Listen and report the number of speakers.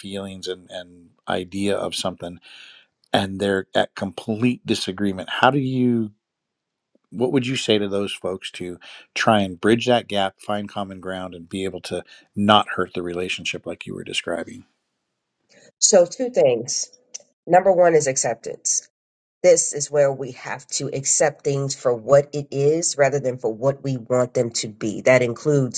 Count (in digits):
2